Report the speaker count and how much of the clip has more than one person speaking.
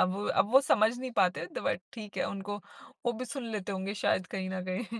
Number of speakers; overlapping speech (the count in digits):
1, no overlap